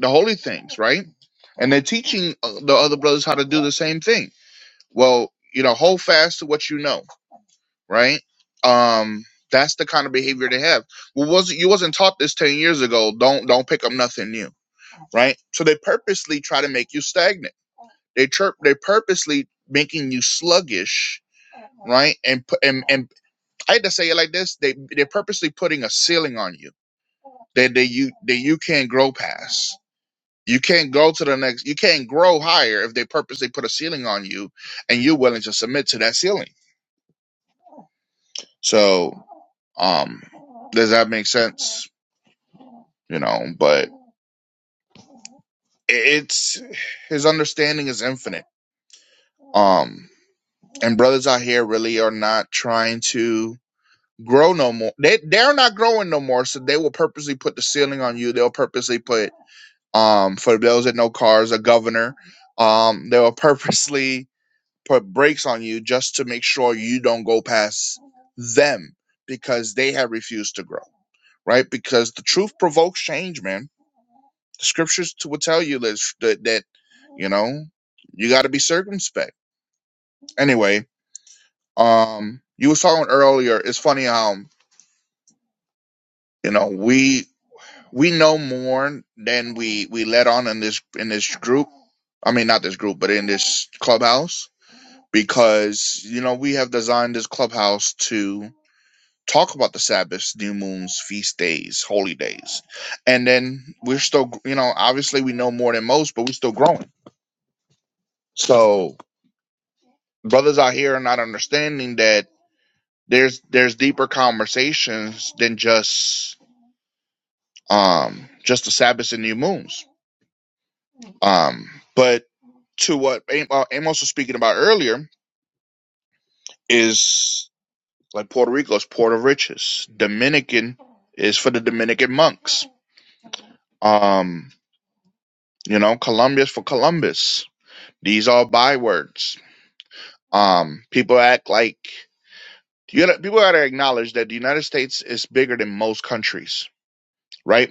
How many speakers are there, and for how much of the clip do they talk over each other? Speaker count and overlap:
1, no overlap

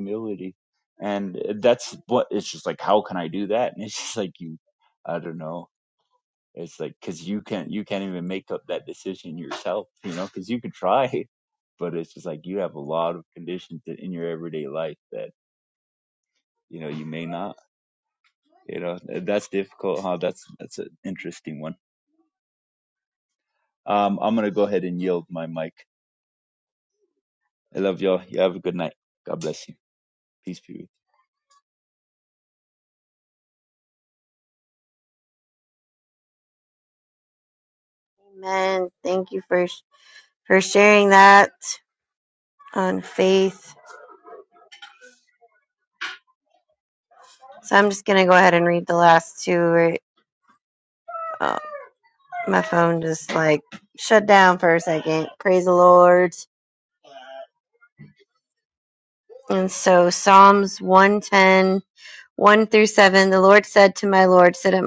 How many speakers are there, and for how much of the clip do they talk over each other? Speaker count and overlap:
2, no overlap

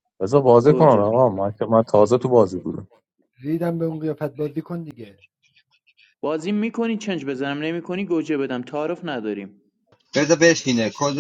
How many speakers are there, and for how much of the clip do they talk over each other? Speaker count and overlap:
4, about 4%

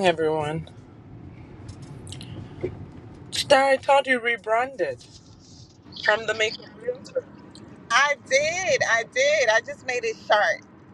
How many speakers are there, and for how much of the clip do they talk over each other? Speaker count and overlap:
2, no overlap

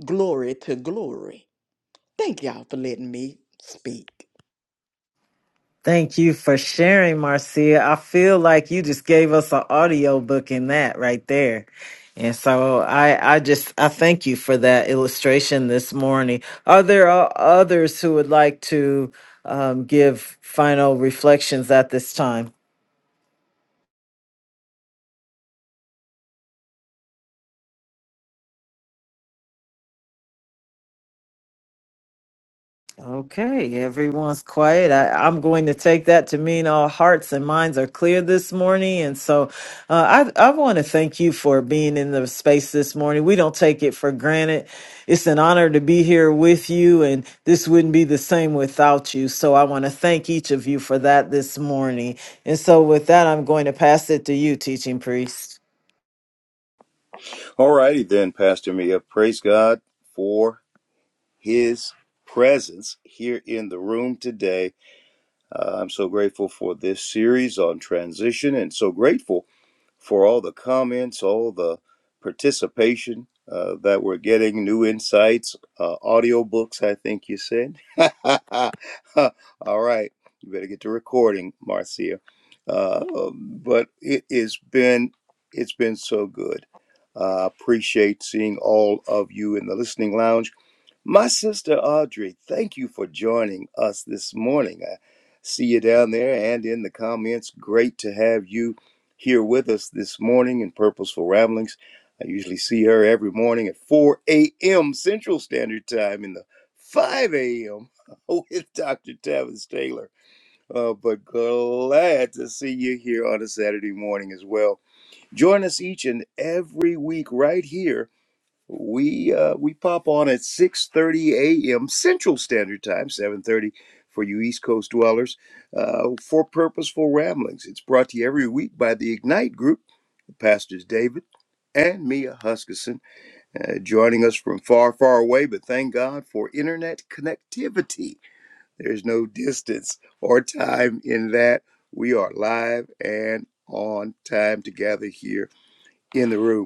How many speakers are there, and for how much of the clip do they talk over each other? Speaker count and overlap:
3, no overlap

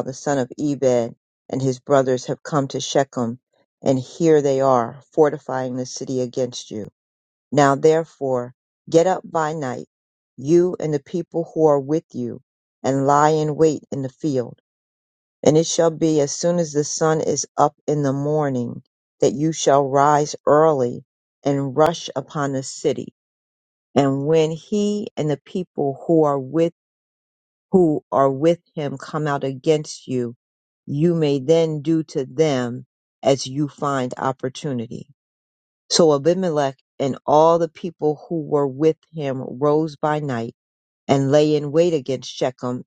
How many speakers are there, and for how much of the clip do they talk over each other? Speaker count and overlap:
1, no overlap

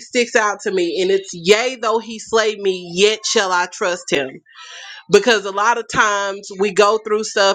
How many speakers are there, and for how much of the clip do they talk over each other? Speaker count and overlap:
1, no overlap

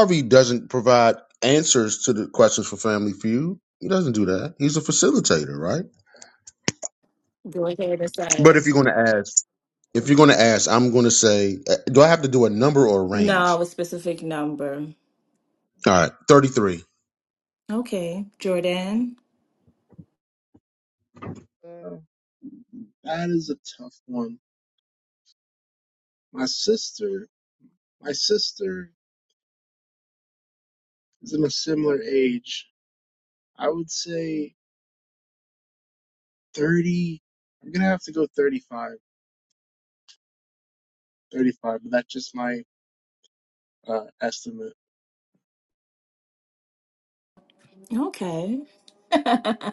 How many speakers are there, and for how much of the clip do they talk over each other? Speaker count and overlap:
3, about 1%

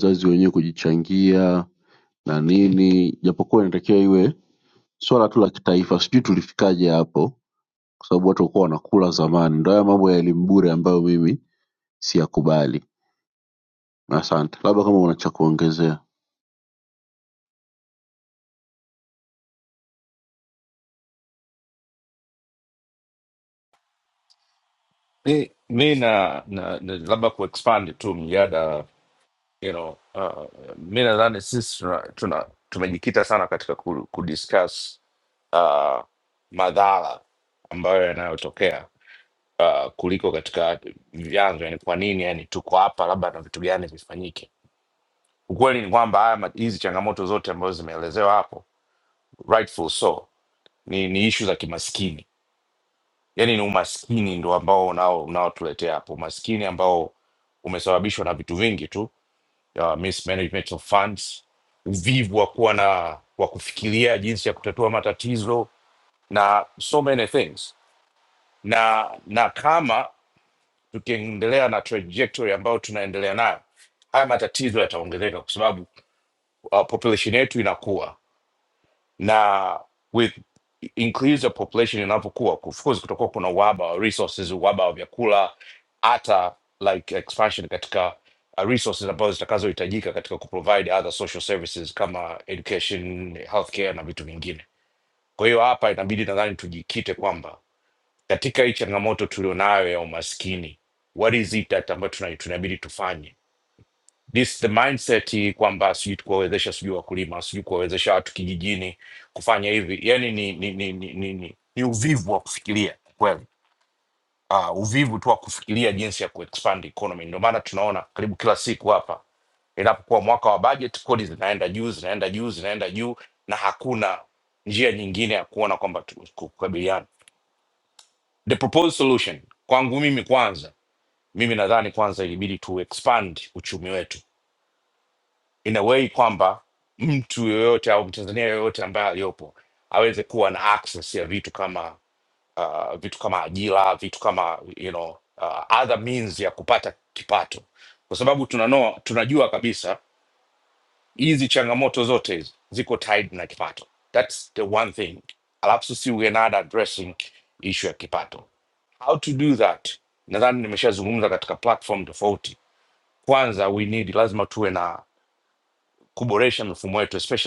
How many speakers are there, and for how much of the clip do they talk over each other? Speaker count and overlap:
2, no overlap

